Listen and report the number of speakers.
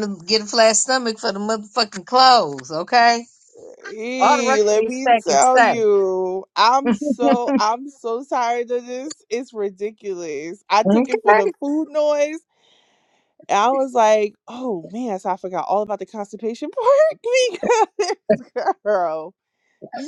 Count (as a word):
two